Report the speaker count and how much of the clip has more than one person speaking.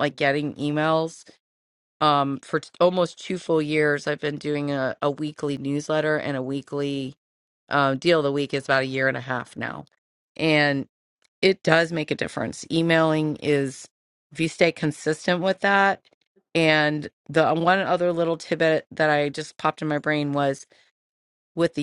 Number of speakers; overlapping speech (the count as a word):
one, no overlap